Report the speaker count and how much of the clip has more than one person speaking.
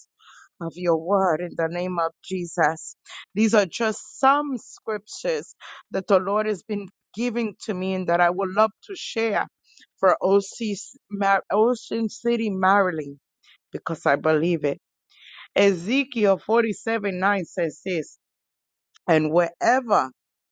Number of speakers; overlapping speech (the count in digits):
1, no overlap